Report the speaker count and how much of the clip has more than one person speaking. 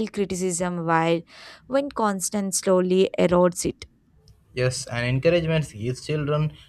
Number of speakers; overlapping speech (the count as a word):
two, no overlap